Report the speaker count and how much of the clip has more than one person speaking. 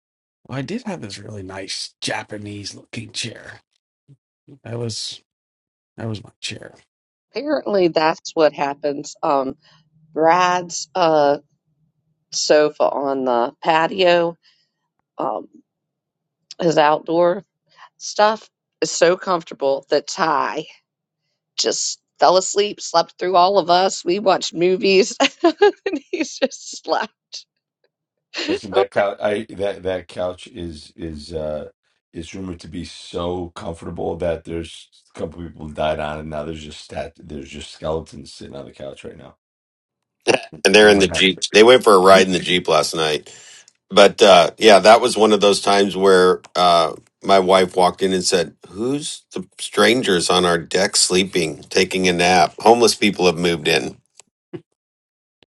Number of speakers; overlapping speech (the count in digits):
4, about 1%